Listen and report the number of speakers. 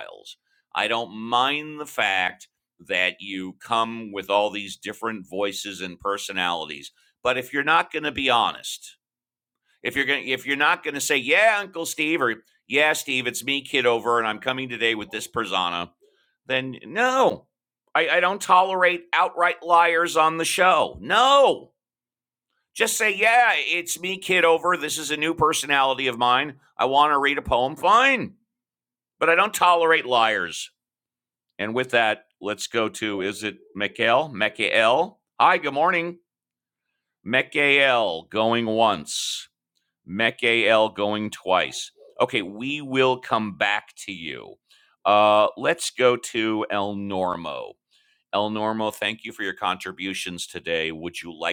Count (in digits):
1